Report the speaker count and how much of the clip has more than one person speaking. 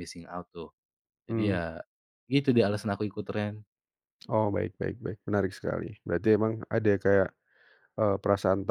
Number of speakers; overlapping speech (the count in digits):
2, about 4%